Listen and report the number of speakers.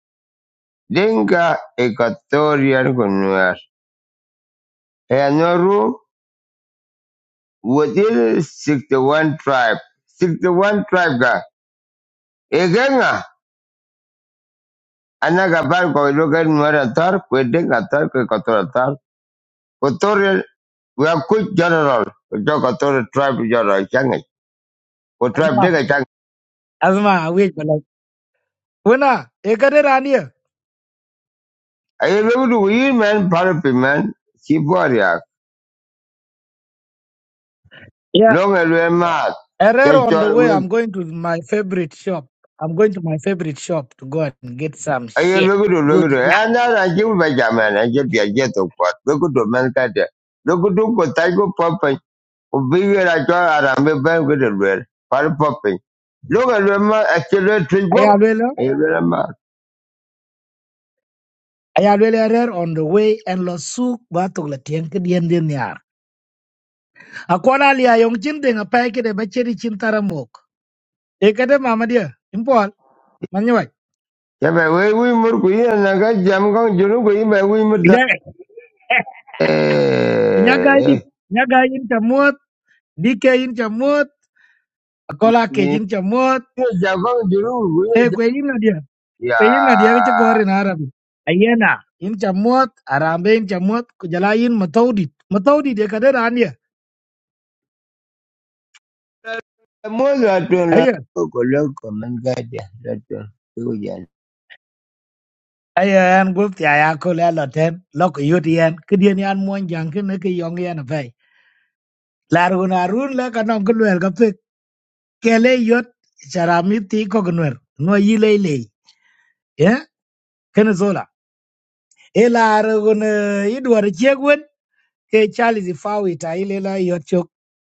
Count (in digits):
2